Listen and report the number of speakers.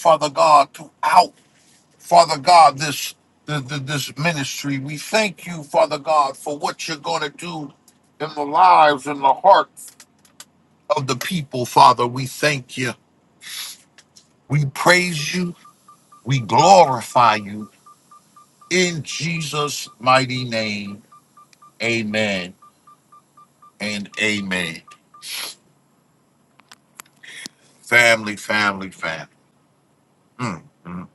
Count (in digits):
1